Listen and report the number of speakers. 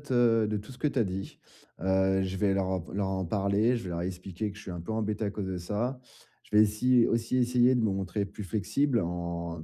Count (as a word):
one